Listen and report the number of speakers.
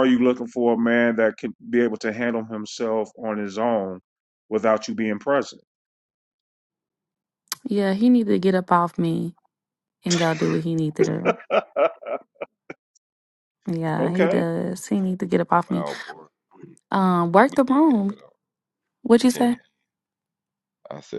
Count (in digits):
3